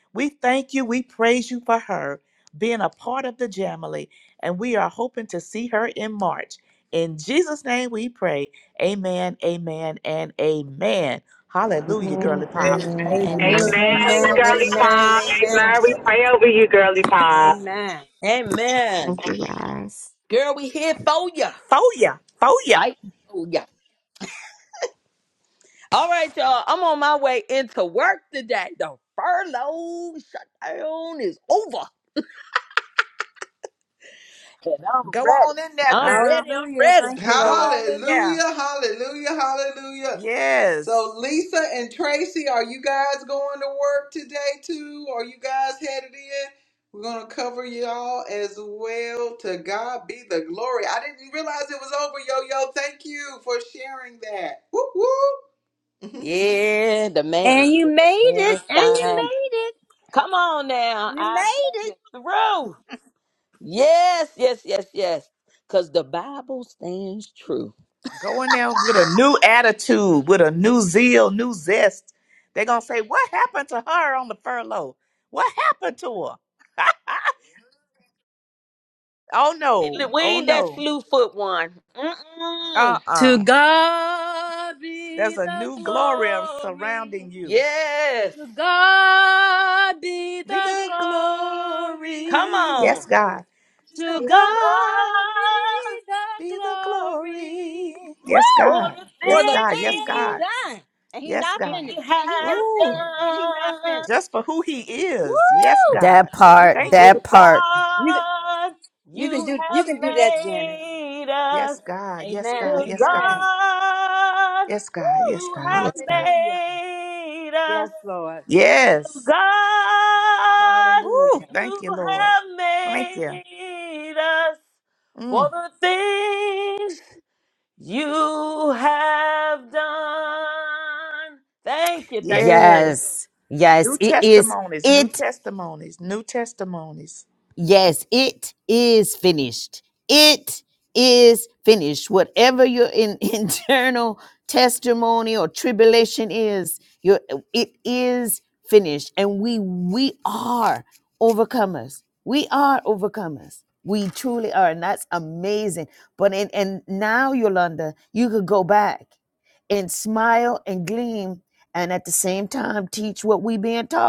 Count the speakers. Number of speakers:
7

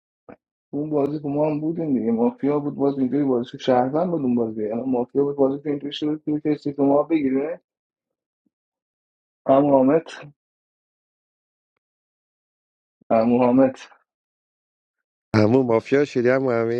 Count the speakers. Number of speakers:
2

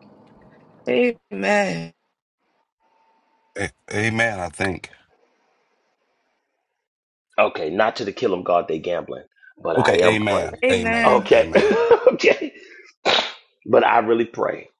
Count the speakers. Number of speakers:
3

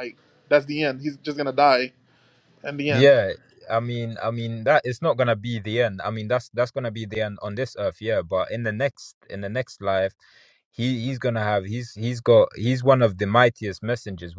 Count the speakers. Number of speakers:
2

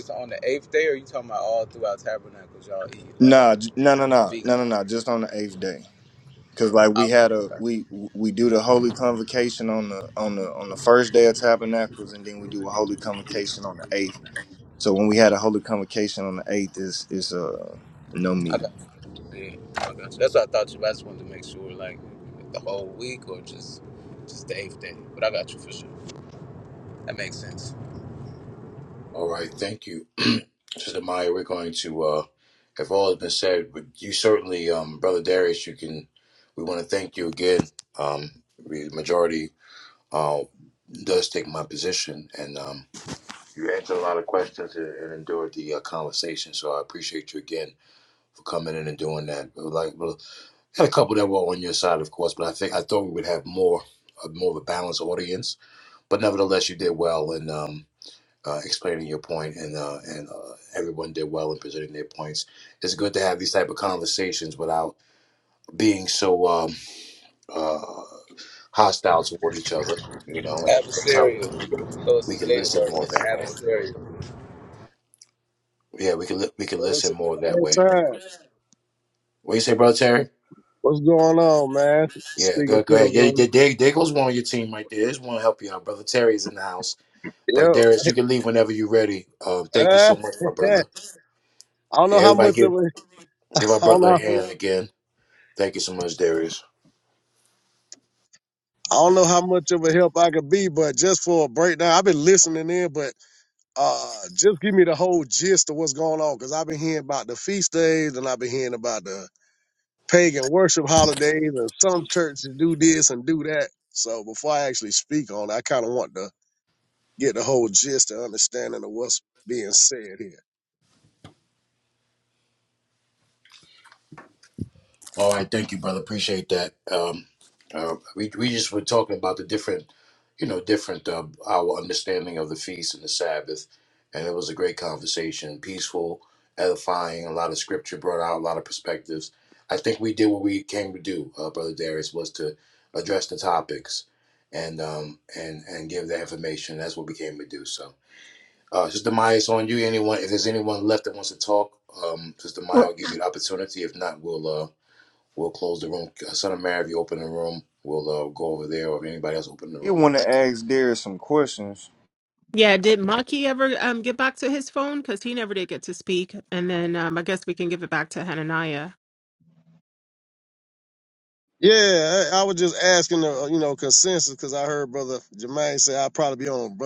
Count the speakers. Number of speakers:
5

